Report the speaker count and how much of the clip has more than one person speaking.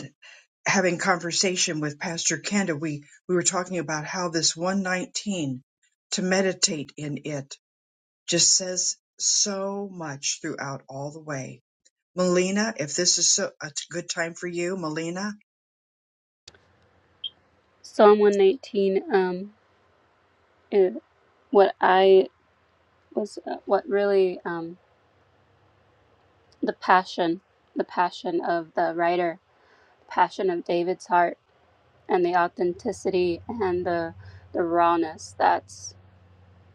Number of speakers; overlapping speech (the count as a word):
two, no overlap